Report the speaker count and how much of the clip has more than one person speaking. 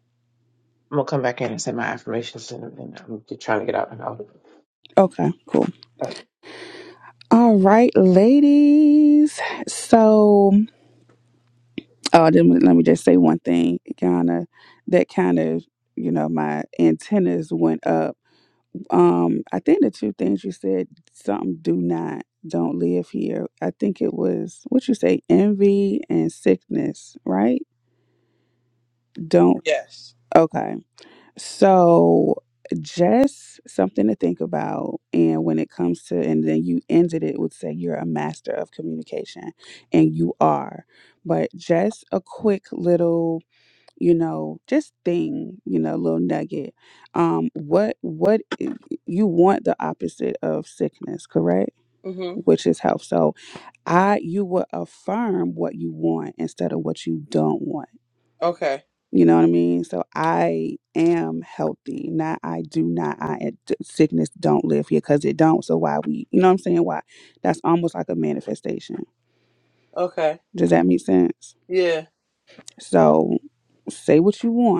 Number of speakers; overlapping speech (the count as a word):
three, under 1%